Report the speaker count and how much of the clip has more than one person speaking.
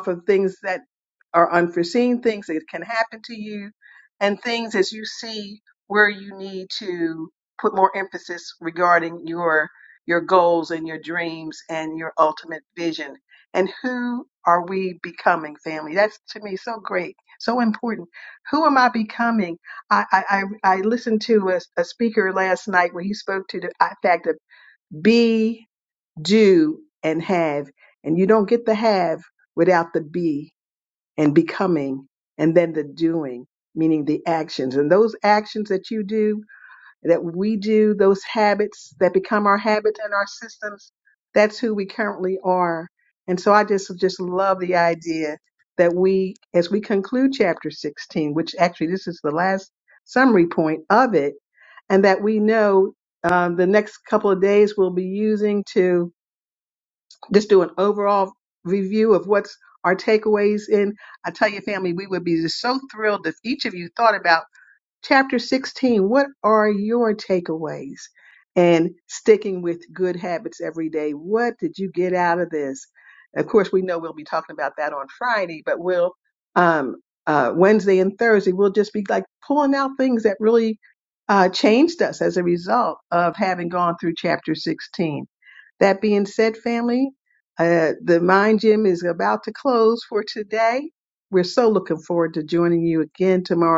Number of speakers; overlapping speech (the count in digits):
1, no overlap